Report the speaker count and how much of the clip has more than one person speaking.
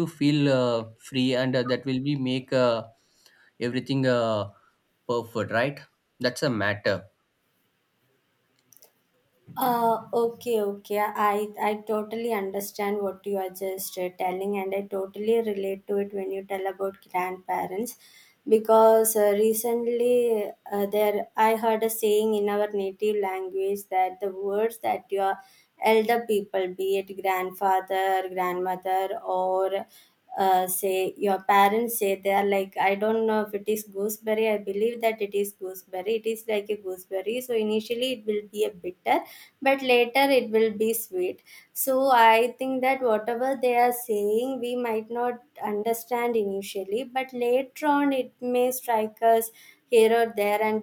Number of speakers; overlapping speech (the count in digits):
2, no overlap